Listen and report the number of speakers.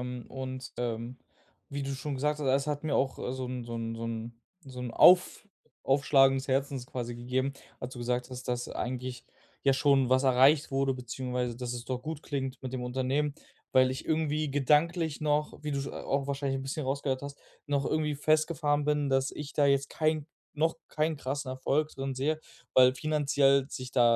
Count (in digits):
1